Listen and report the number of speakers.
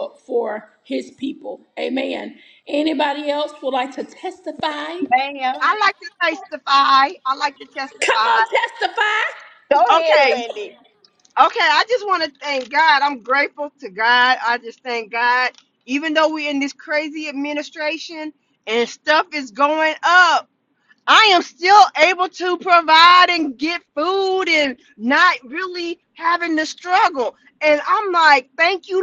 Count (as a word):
three